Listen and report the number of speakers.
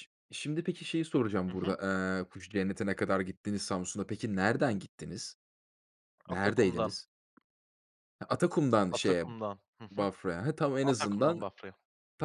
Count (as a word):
two